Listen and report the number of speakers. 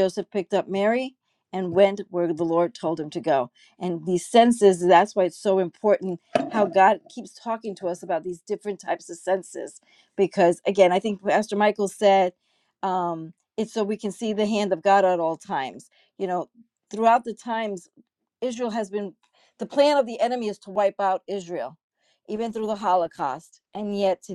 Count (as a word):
one